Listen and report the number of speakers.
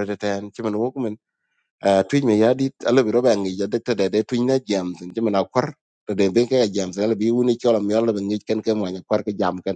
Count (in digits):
1